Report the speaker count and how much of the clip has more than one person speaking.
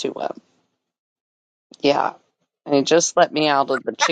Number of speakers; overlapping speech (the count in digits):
1, no overlap